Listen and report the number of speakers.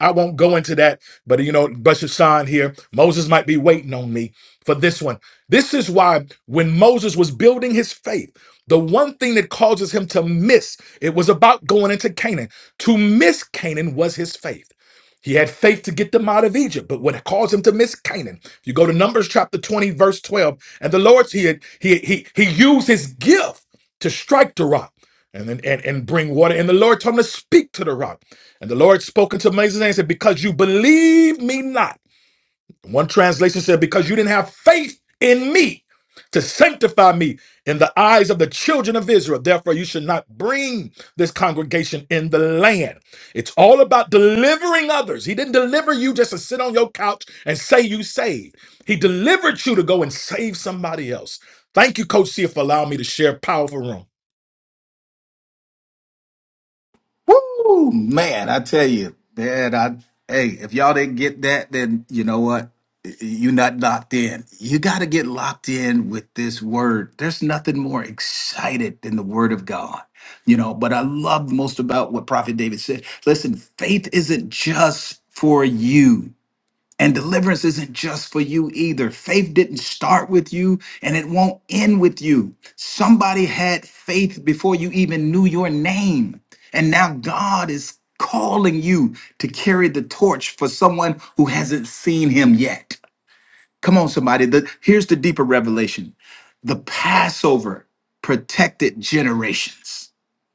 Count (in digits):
2